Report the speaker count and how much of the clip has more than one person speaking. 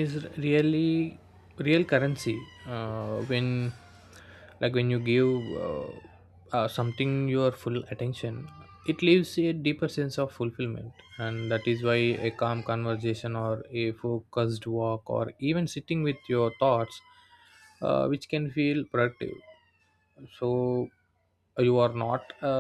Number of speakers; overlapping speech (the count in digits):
1, no overlap